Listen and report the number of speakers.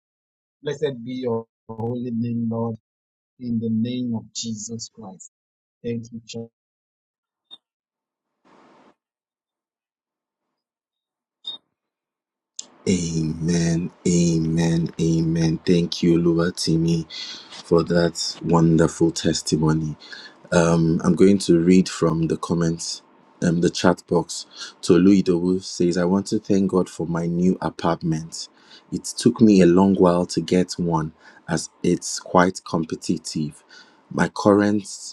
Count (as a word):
two